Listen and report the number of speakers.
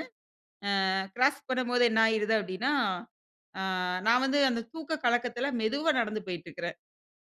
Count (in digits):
1